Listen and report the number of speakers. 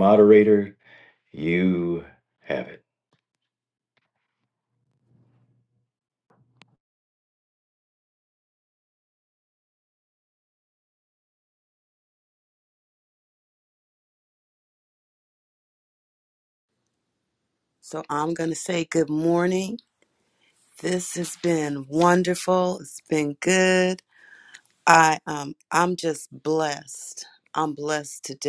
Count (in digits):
2